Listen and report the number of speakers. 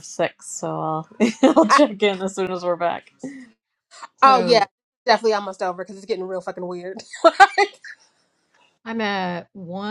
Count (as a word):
three